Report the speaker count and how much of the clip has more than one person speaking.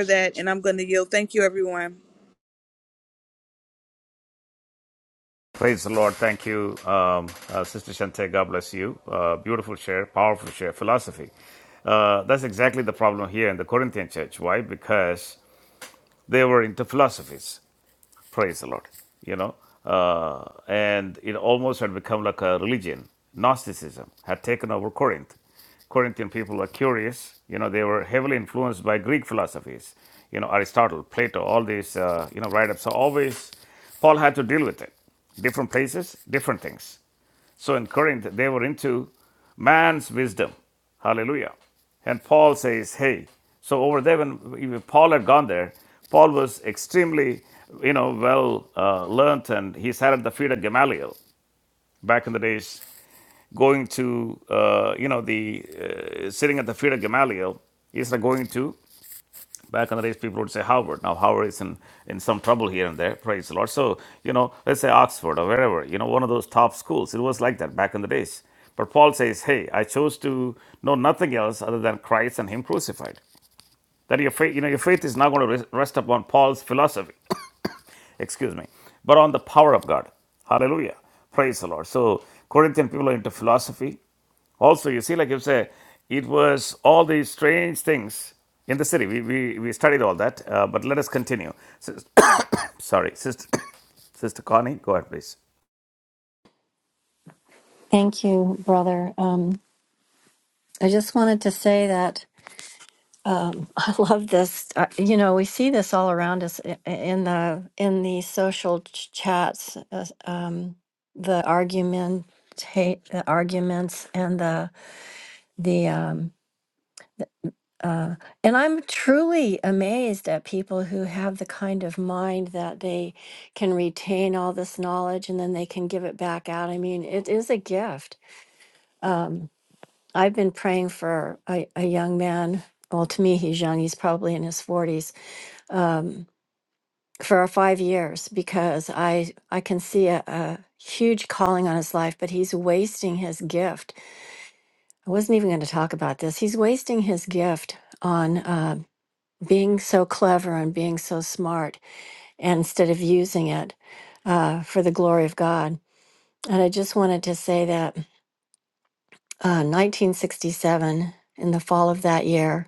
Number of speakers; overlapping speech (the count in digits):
3, no overlap